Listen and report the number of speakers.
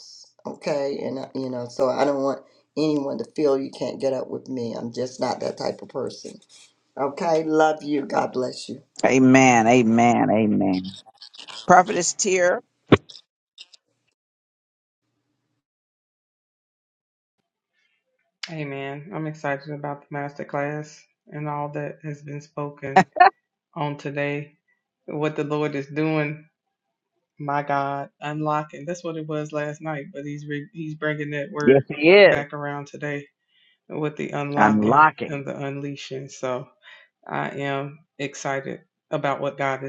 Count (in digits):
3